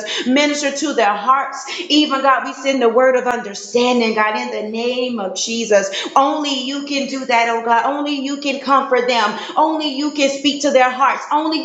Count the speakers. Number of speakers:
one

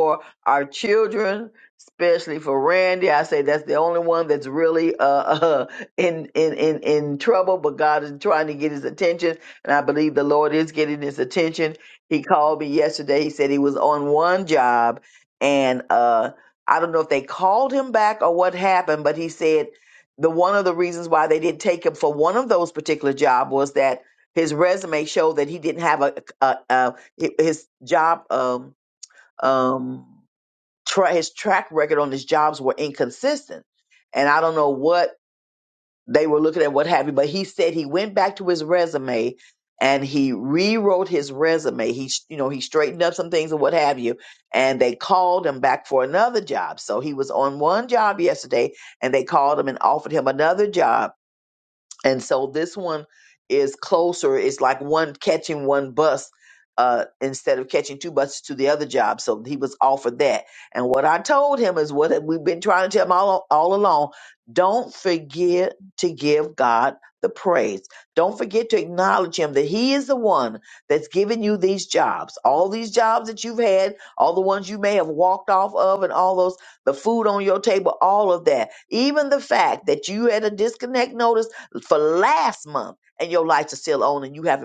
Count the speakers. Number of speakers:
one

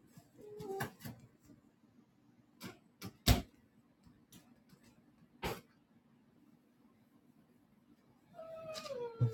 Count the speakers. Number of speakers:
zero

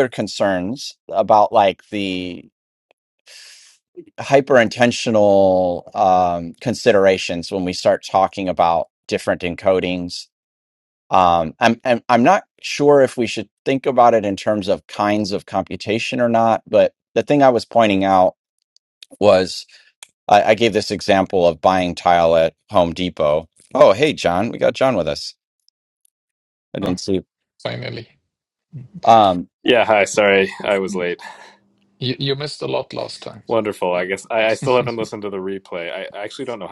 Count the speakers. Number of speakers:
three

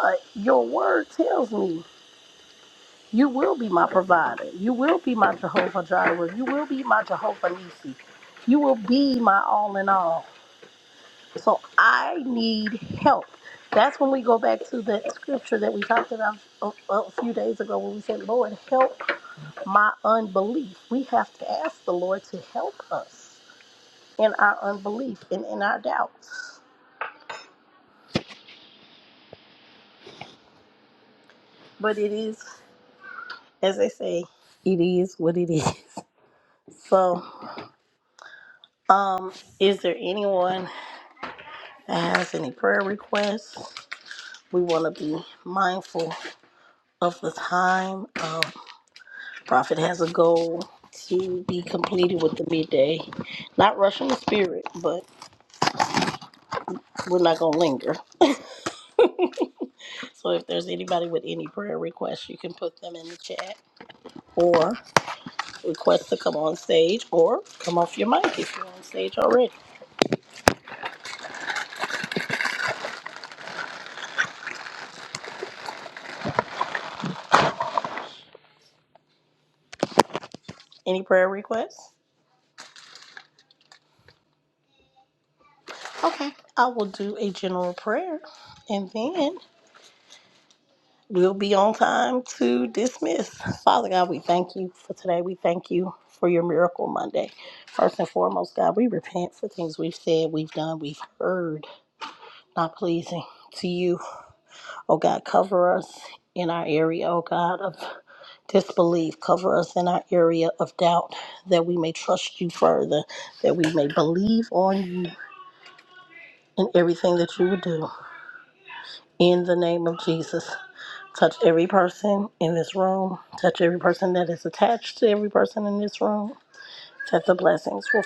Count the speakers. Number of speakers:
one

